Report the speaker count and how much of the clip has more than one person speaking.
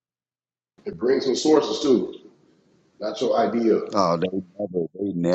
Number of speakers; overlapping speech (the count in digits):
2, no overlap